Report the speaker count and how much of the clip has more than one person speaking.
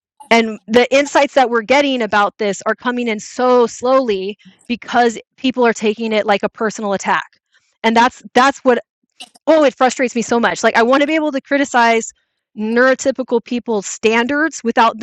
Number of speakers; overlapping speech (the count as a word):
one, no overlap